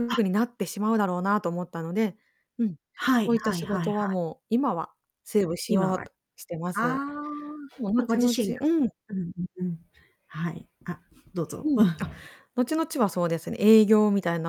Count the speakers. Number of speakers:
2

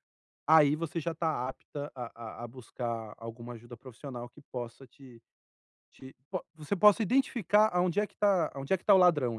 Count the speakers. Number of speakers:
1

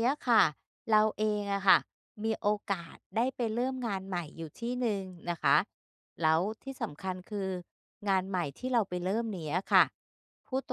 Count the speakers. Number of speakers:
1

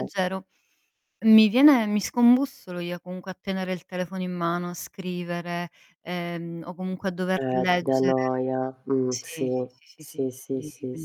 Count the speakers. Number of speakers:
2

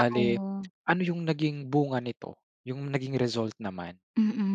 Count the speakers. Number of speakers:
2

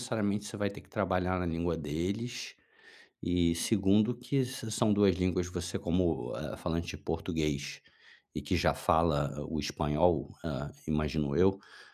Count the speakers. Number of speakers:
1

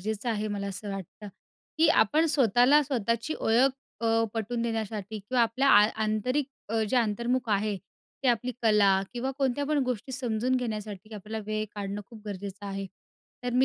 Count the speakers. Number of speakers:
1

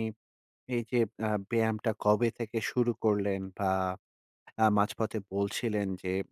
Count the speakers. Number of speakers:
1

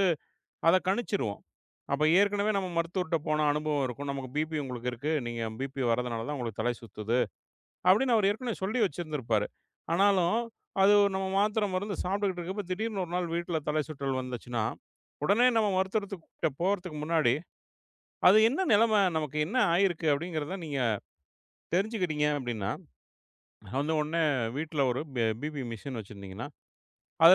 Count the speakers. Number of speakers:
1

